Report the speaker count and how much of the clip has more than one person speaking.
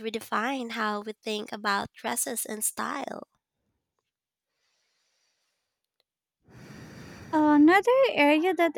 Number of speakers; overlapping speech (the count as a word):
two, no overlap